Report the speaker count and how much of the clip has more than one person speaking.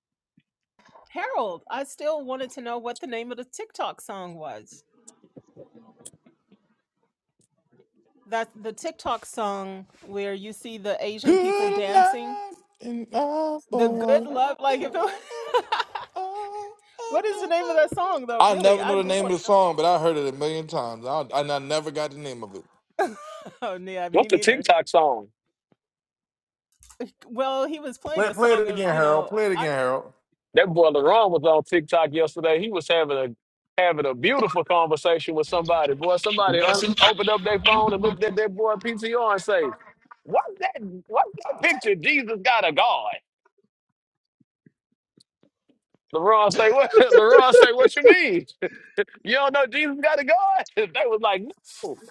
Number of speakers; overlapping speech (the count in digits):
3, about 8%